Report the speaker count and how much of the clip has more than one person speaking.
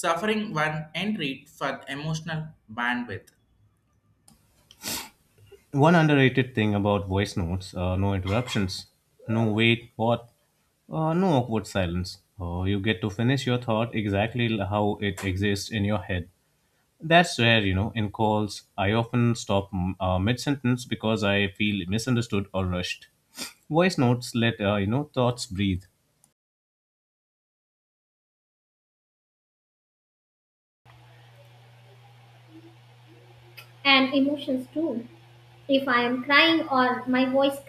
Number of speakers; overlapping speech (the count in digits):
3, no overlap